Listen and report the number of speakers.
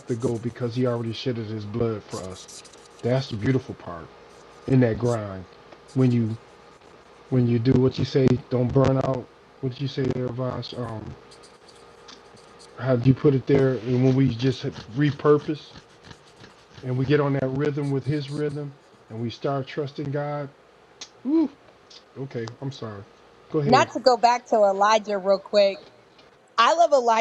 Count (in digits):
2